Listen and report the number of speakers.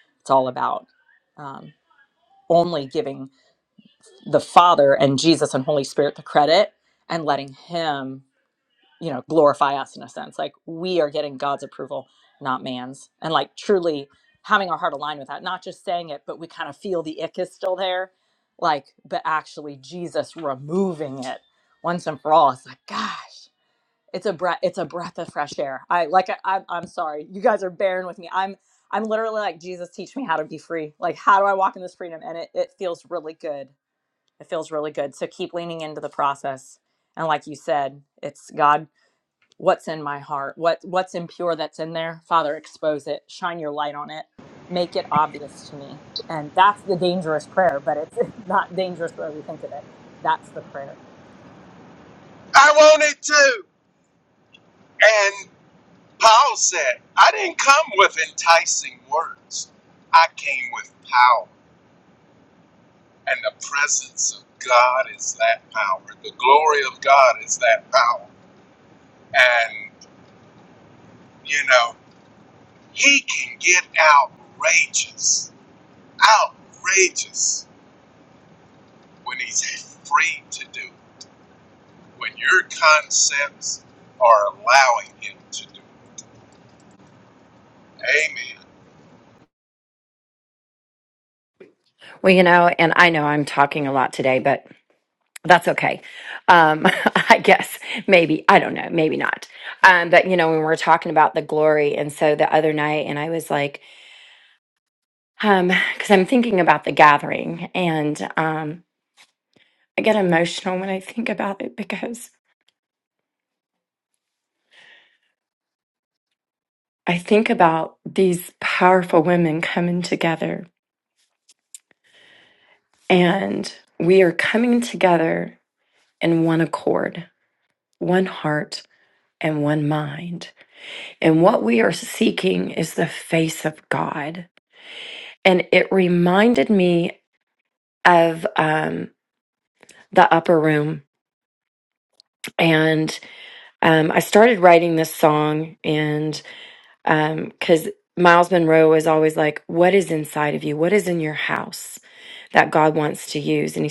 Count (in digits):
3